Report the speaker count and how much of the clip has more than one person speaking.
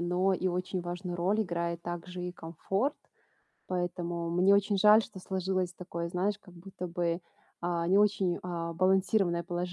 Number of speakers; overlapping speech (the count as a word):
one, no overlap